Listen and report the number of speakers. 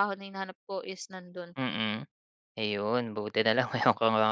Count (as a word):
two